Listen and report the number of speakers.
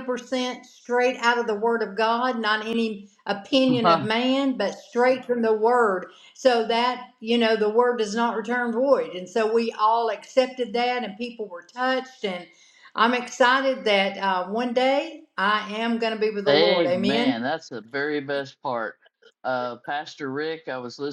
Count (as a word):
two